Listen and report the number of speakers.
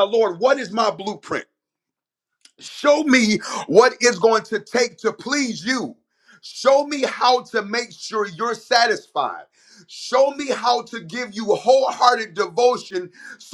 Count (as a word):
one